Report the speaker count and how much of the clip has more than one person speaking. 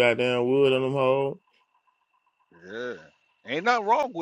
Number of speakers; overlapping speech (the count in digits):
2, no overlap